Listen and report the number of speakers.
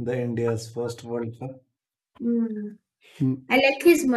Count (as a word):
two